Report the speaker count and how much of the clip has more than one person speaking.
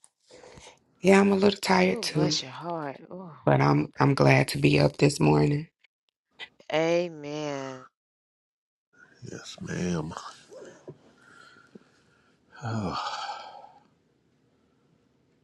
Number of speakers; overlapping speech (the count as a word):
three, about 3%